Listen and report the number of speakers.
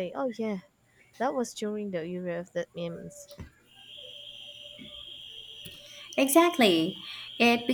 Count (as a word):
two